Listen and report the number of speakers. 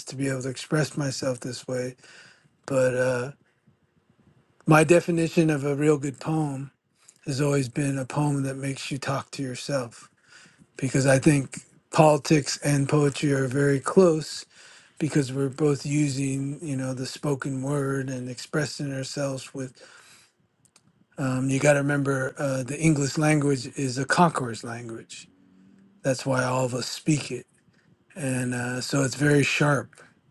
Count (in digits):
1